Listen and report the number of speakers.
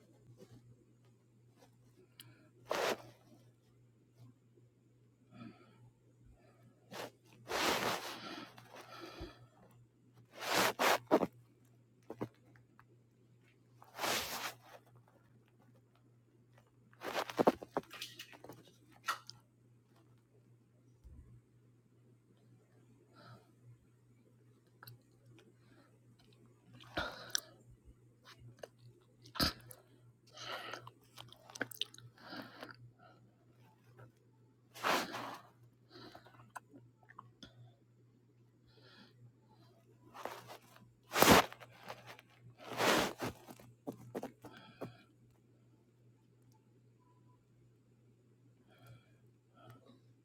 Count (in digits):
0